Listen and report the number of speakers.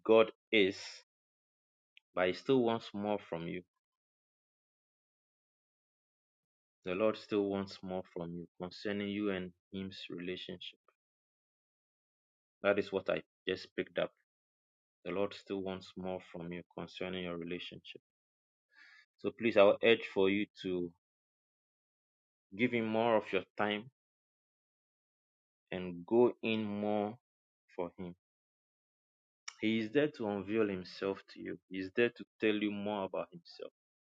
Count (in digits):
1